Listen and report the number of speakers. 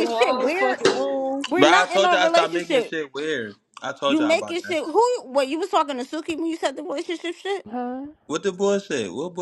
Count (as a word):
three